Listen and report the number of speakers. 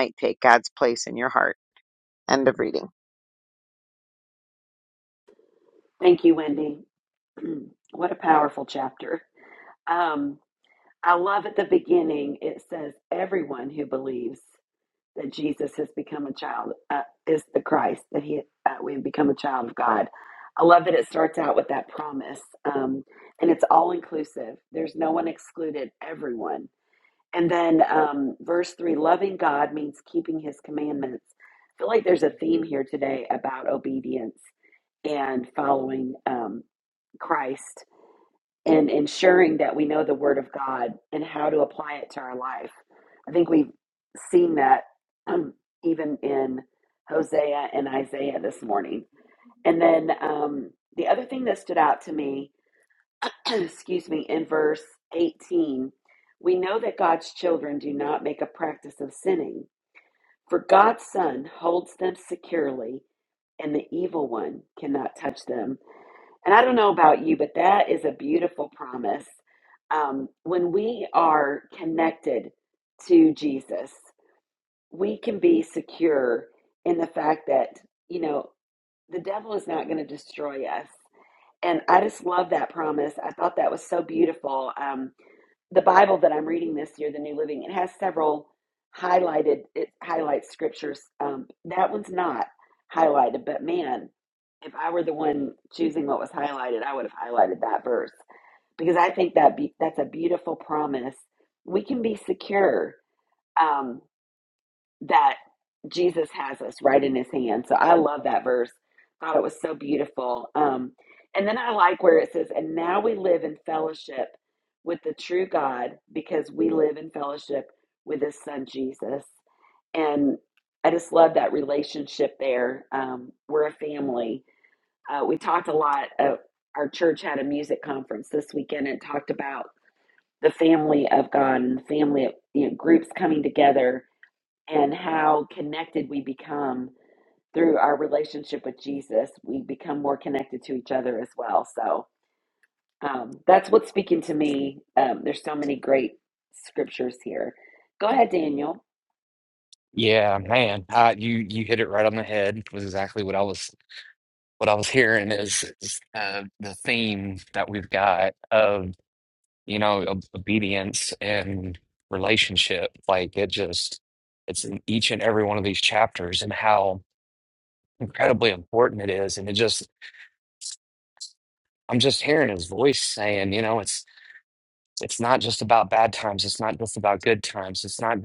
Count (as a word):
three